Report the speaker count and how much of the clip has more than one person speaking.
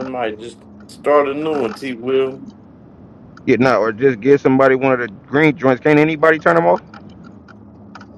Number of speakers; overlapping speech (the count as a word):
two, no overlap